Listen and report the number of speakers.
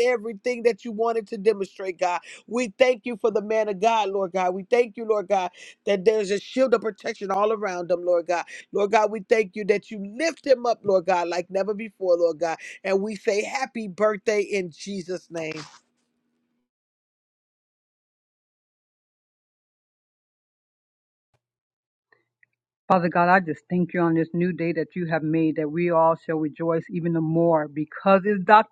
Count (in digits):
2